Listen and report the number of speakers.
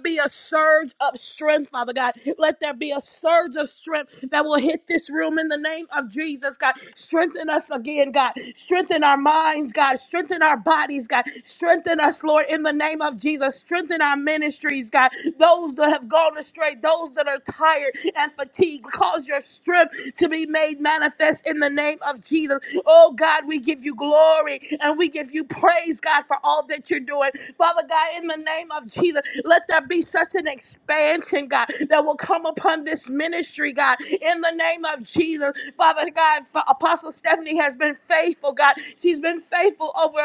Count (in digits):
1